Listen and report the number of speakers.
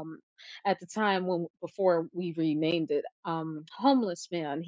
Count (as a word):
one